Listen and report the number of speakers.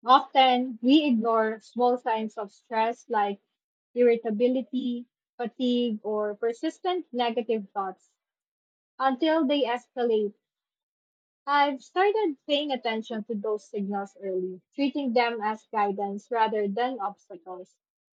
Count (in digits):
1